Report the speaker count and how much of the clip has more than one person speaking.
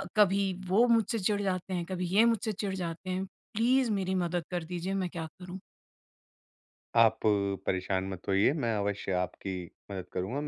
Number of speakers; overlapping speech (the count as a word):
two, no overlap